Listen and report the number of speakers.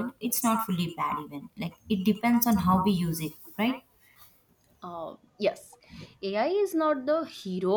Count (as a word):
two